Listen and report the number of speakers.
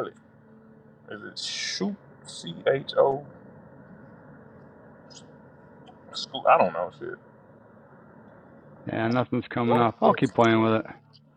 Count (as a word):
two